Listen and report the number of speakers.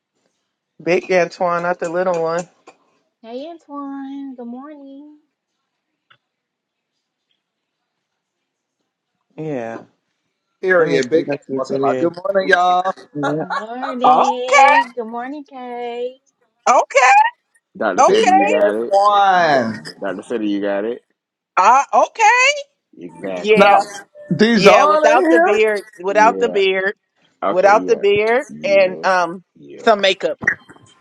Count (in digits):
4